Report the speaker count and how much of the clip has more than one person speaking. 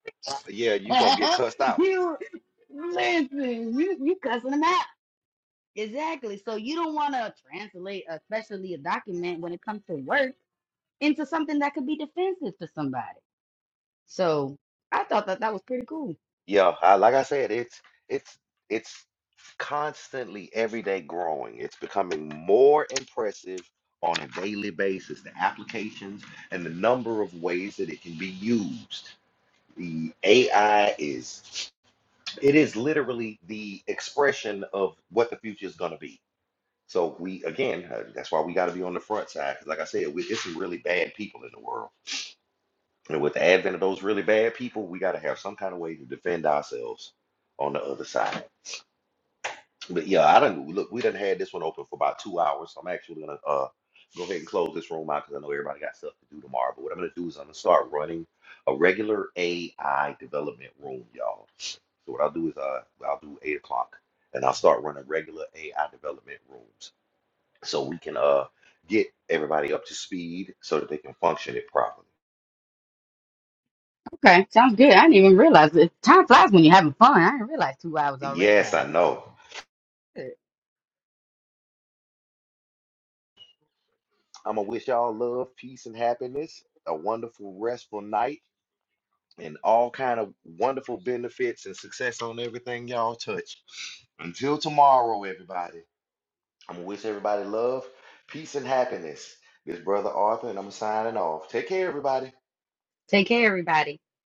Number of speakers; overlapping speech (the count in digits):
2, about 1%